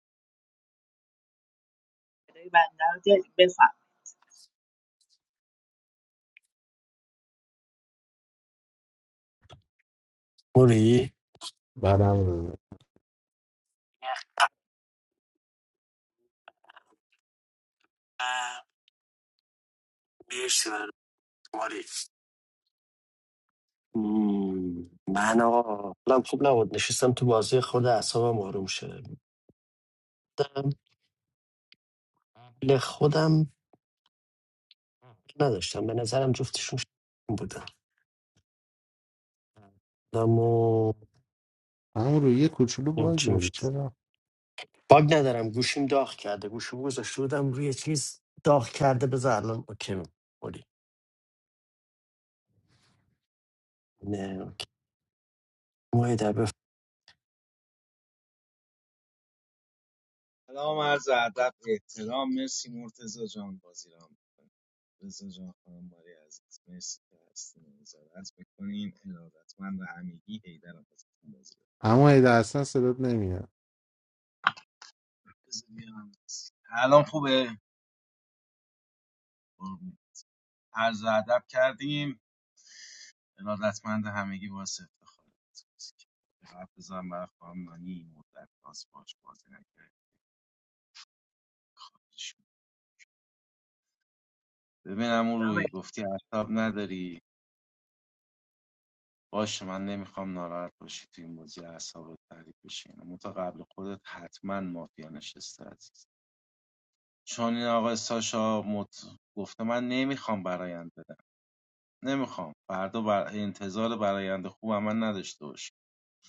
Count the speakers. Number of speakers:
four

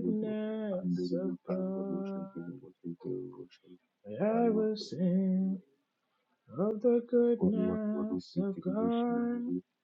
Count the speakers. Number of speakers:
two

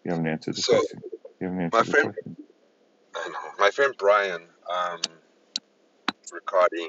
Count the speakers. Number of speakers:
two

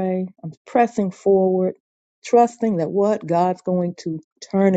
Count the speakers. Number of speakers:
one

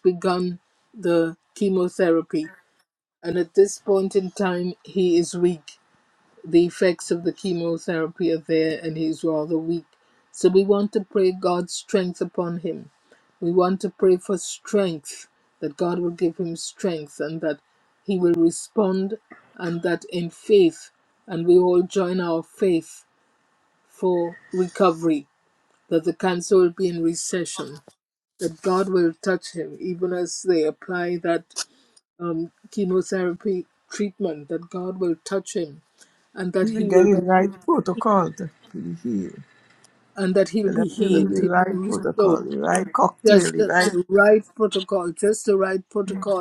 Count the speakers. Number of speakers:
two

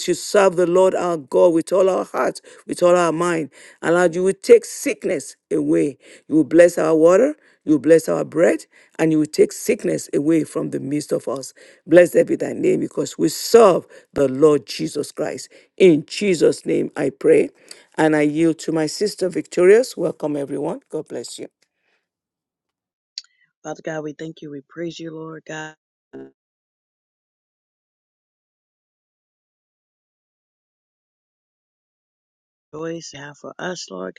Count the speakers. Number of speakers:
two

